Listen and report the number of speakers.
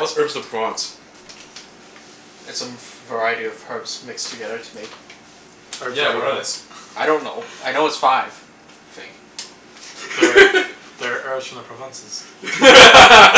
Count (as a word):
three